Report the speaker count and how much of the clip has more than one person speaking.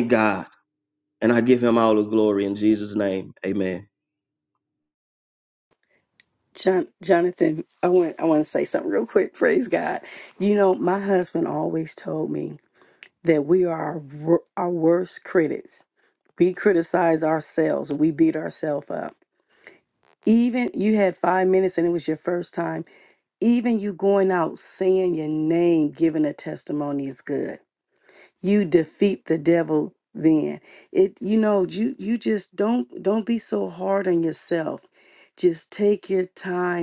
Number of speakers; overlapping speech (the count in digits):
2, no overlap